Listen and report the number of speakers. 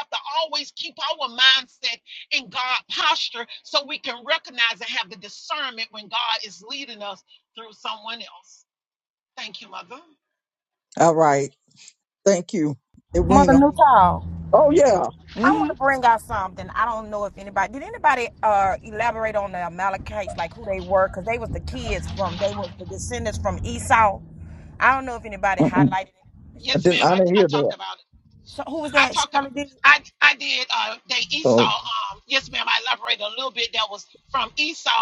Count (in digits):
3